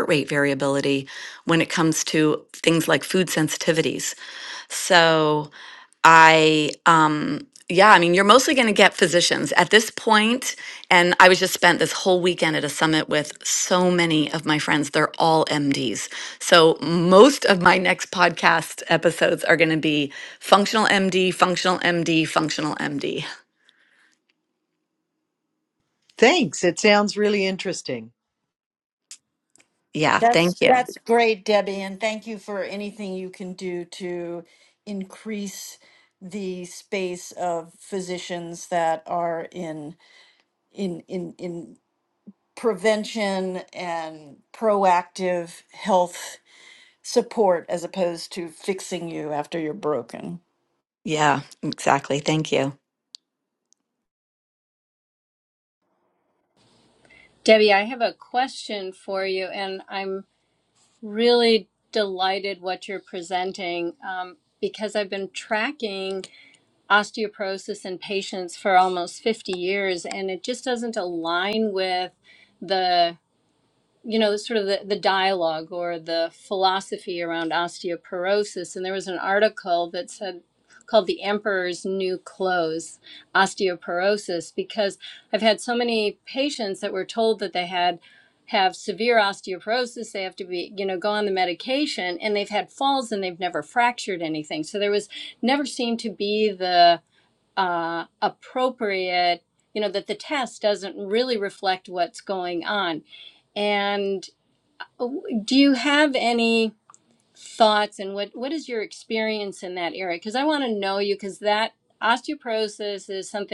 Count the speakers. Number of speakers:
four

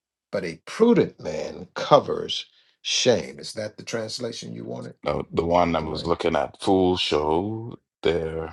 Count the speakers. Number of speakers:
two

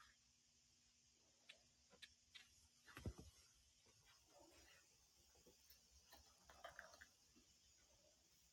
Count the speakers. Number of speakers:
zero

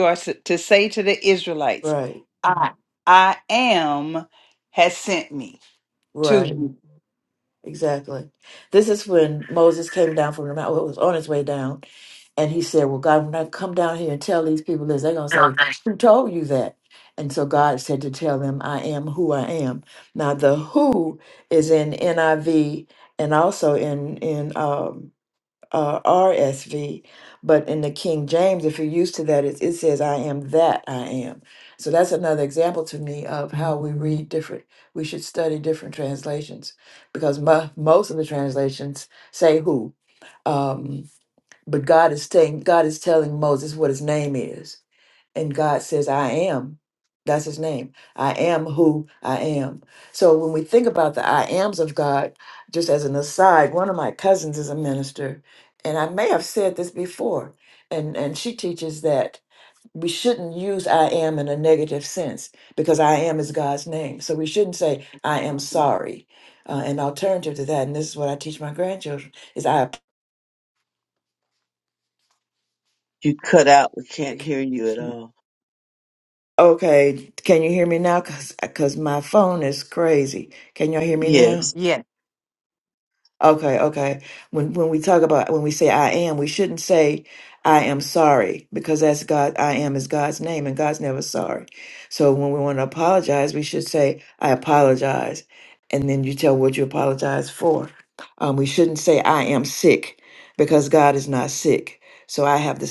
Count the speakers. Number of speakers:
three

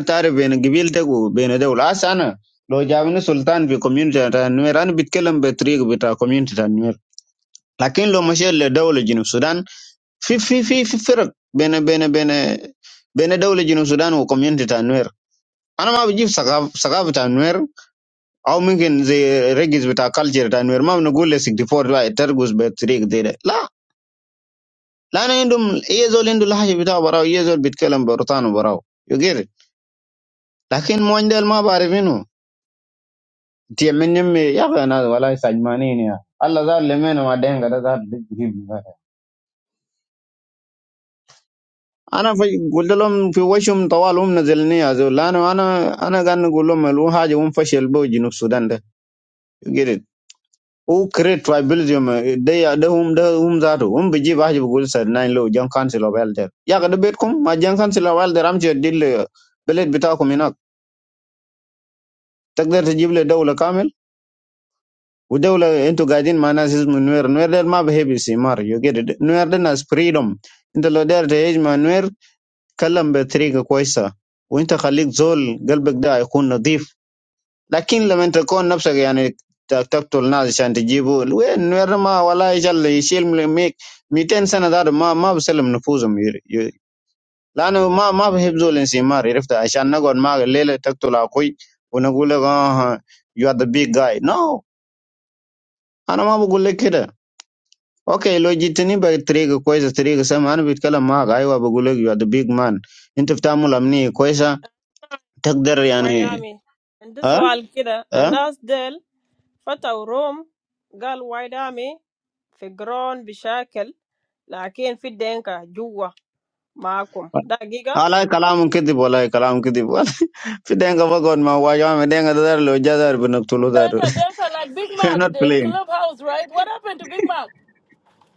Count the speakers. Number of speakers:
three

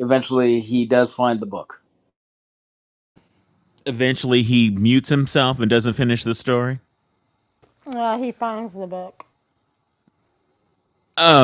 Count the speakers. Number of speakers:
three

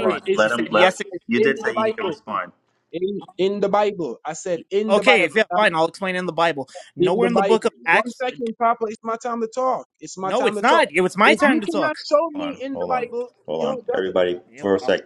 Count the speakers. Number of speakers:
three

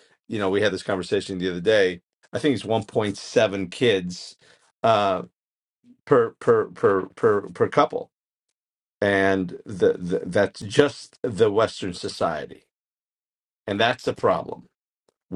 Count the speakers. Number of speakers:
one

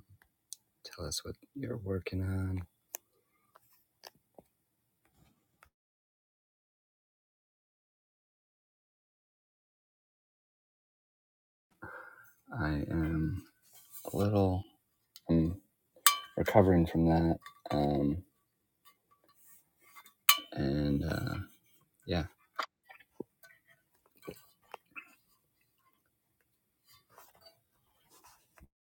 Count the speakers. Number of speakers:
one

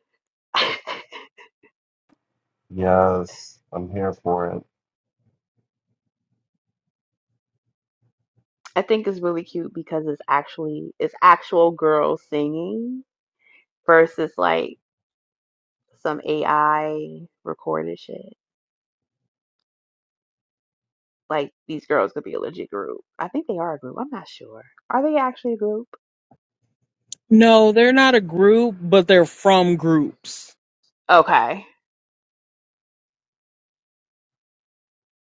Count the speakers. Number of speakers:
three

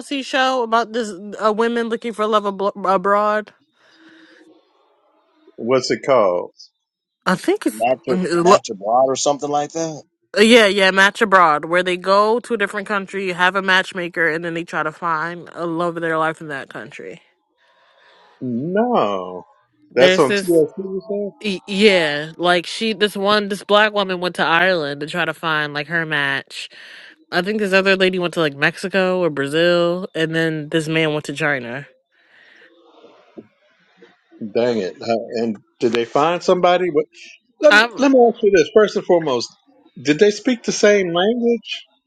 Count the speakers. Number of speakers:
three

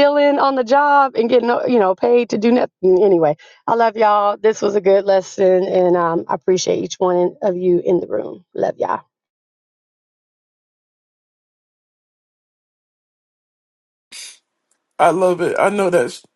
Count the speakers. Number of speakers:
two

